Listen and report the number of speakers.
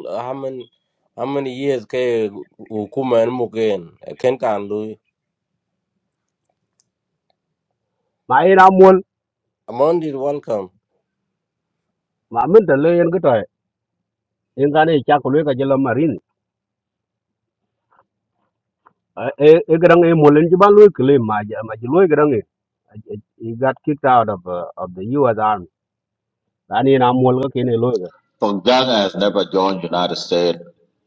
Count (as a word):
three